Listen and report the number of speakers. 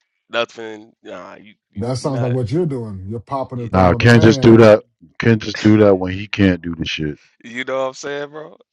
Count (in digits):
3